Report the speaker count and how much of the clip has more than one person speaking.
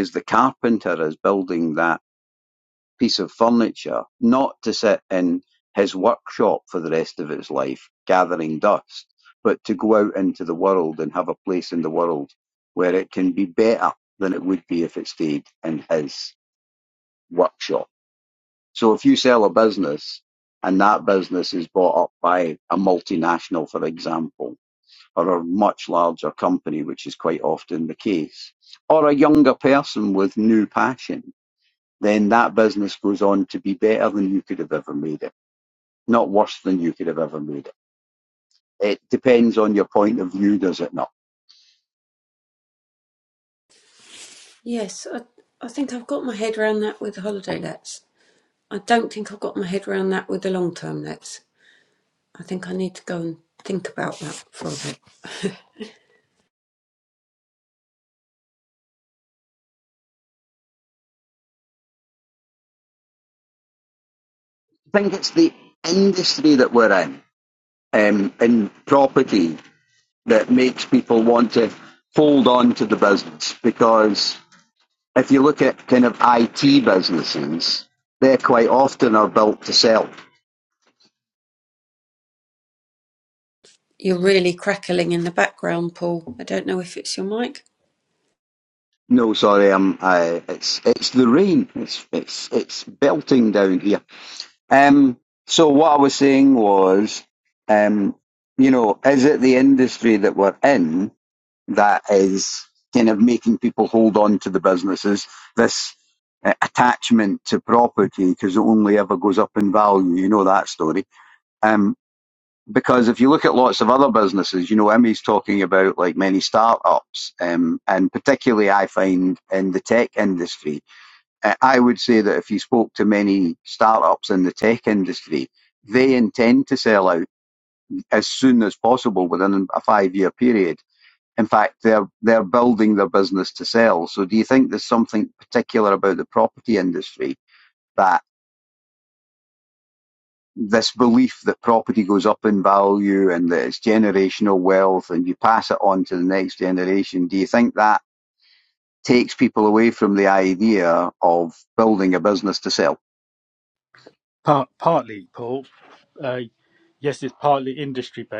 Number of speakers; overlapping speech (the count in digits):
3, no overlap